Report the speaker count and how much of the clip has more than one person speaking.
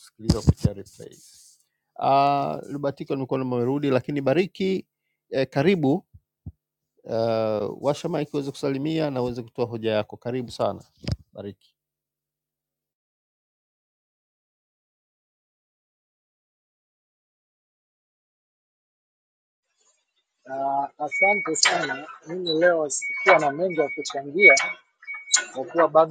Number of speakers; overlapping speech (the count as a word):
two, no overlap